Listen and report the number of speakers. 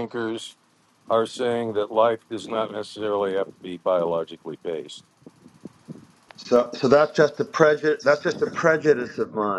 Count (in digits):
2